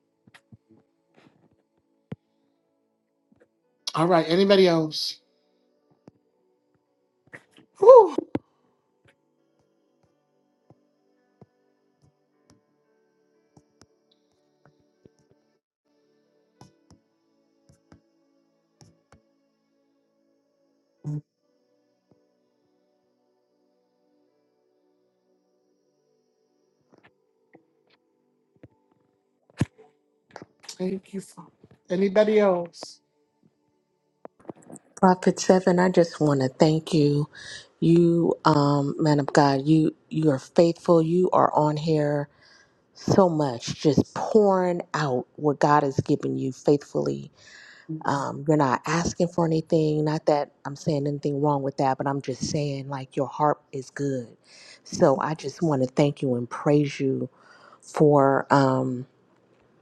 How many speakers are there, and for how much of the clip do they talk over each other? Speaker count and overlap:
2, no overlap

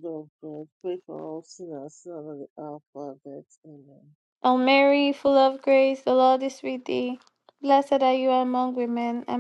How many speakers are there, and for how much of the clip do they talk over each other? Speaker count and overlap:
2, no overlap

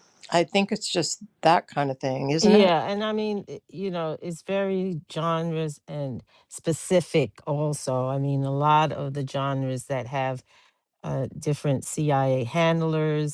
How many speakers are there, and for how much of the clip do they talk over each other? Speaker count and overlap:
2, about 2%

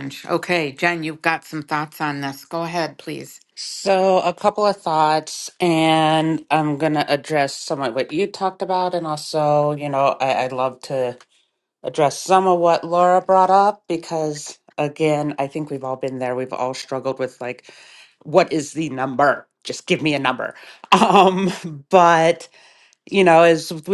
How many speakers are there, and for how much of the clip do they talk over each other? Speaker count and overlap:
2, no overlap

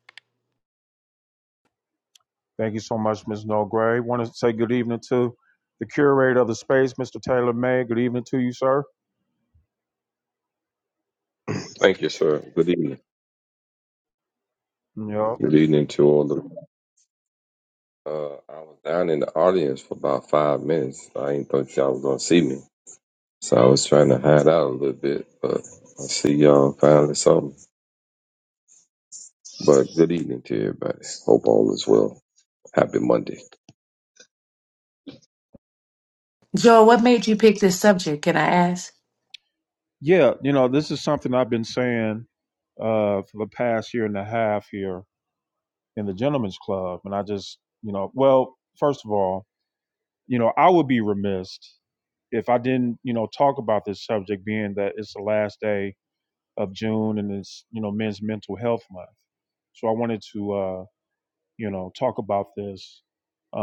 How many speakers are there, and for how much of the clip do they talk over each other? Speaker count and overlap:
3, no overlap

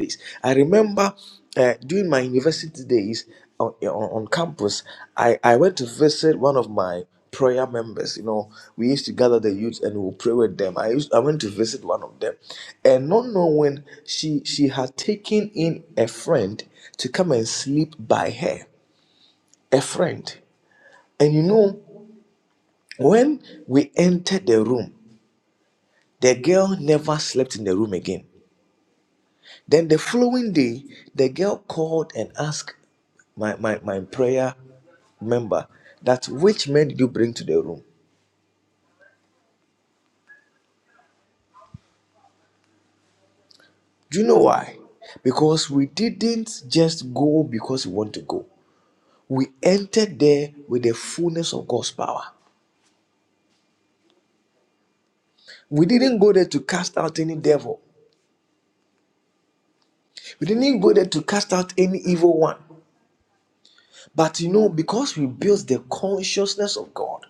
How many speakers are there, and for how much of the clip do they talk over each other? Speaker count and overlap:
1, no overlap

